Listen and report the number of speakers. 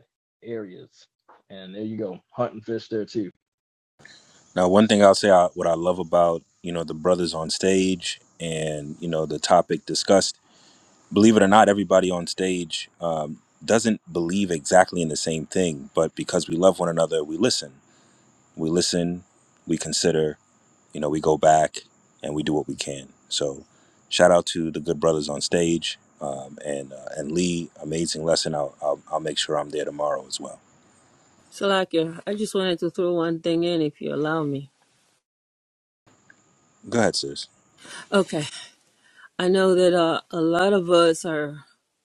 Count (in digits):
3